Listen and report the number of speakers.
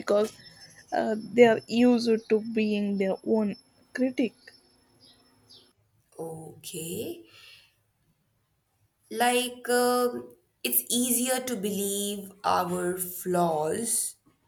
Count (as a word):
two